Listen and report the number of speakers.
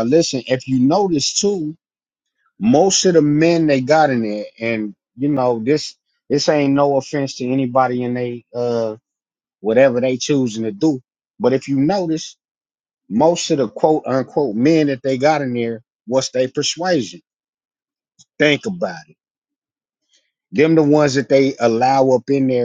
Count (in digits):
1